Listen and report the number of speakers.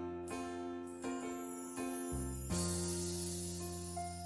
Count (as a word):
zero